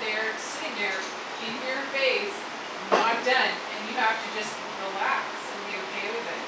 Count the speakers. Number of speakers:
1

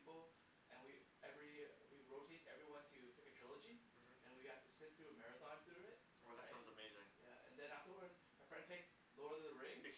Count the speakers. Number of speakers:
2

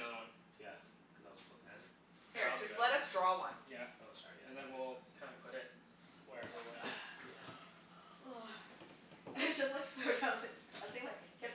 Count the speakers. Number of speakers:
4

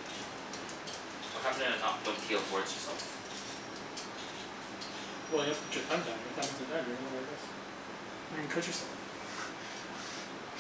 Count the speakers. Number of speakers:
2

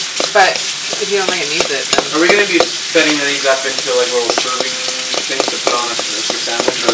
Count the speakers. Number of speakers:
2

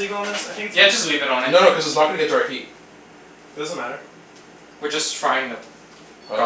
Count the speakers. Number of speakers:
3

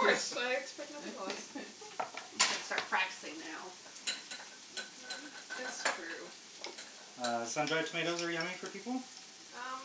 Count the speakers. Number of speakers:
3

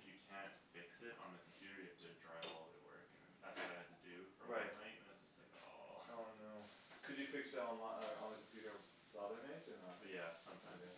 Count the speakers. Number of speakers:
2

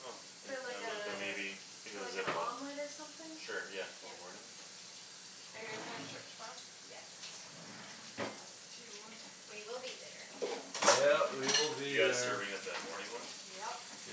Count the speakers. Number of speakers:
4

